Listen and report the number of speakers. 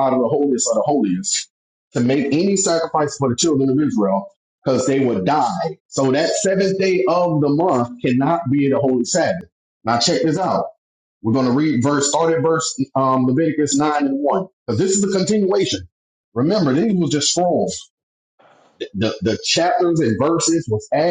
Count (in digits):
1